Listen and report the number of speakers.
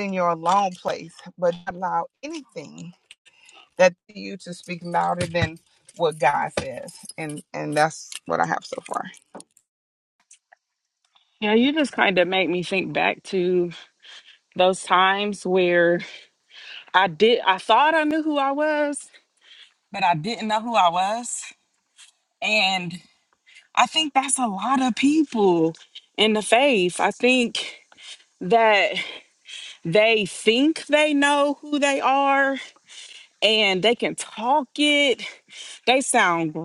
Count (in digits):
2